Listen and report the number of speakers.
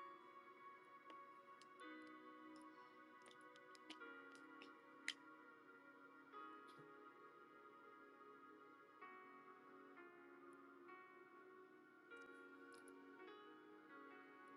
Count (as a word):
zero